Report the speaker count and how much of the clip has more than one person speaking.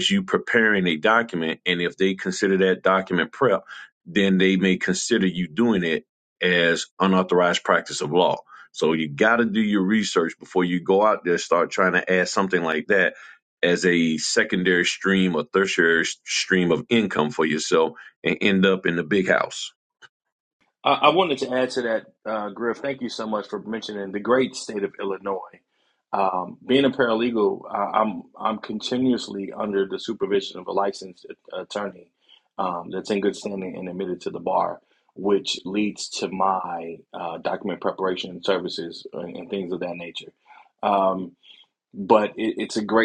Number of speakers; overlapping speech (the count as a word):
two, no overlap